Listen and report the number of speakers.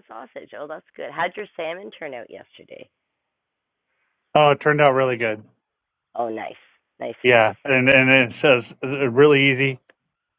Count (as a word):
two